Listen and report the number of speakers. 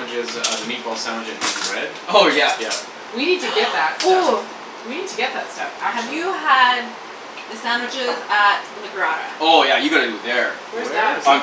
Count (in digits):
4